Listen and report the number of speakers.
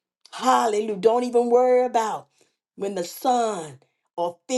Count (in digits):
1